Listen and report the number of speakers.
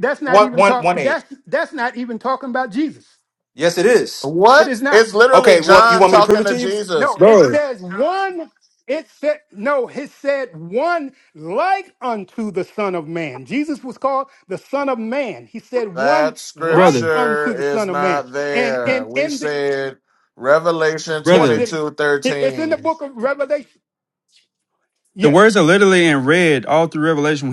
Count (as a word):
four